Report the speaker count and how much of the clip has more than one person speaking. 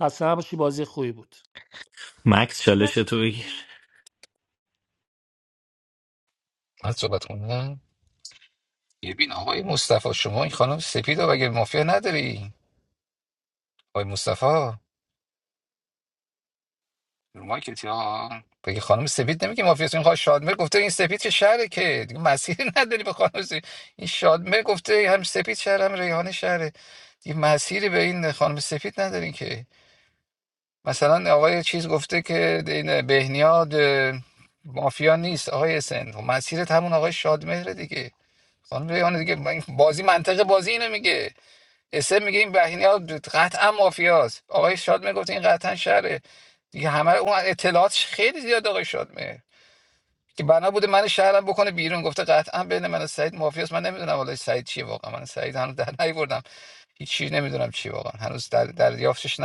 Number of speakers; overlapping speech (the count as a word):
three, no overlap